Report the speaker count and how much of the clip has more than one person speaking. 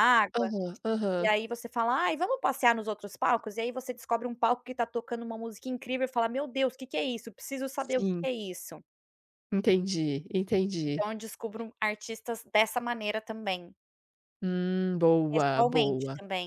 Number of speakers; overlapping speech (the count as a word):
two, about 9%